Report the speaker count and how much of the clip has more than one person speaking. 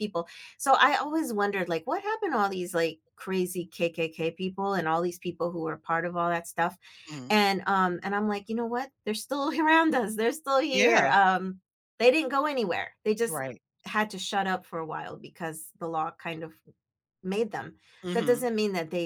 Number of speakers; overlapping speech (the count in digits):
2, about 4%